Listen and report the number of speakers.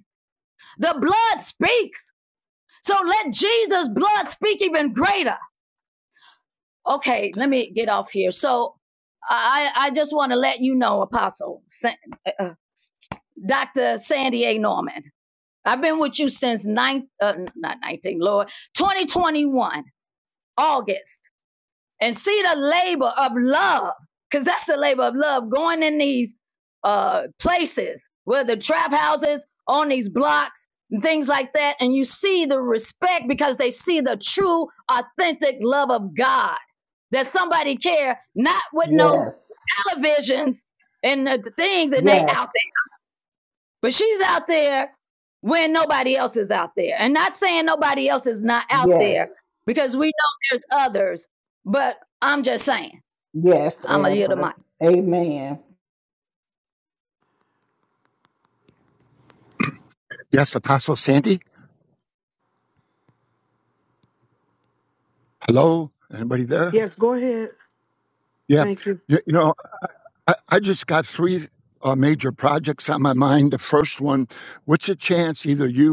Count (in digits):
4